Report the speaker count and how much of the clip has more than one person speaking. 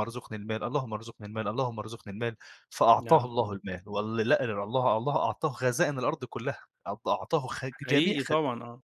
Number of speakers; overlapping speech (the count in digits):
2, about 11%